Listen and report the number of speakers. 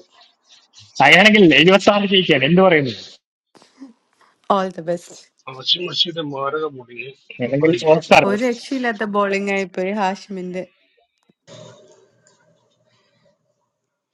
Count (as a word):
three